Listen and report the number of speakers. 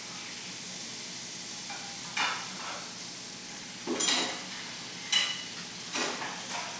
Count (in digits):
0